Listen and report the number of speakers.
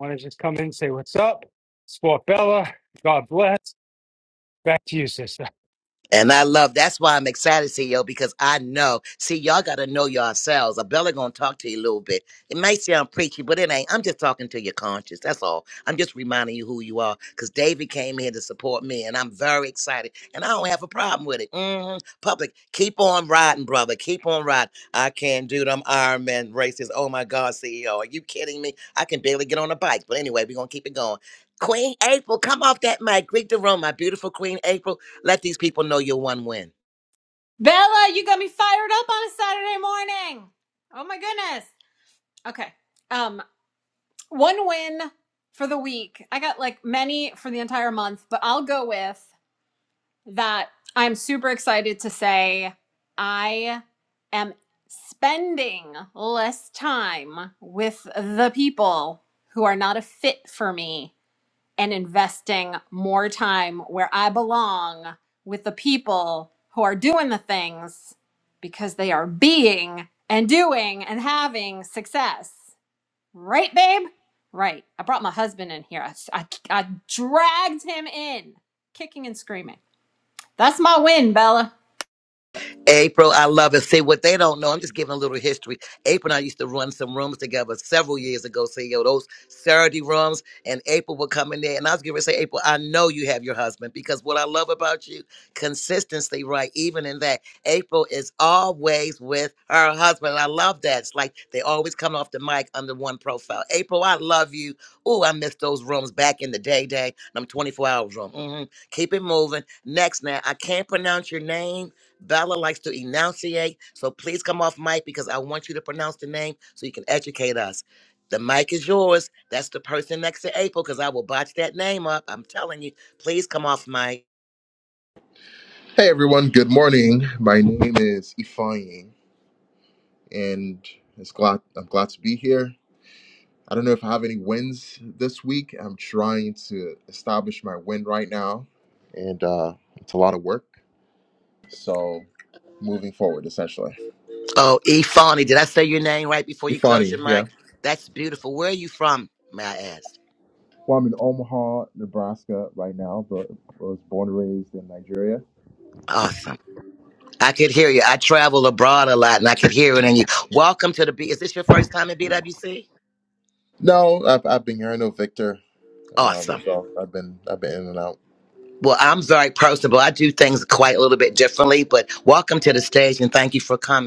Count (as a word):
four